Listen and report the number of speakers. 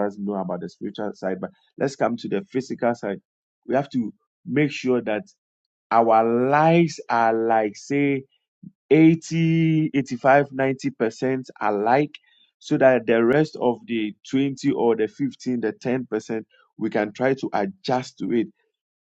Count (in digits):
1